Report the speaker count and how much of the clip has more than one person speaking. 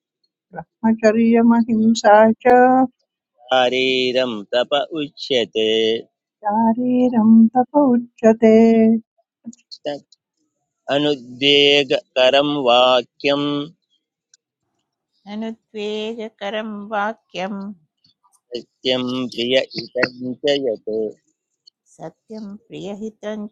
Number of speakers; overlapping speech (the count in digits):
3, no overlap